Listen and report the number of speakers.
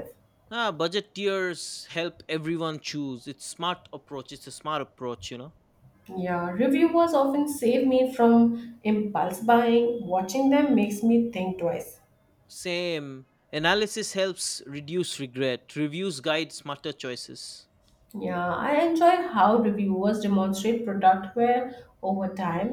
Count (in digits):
2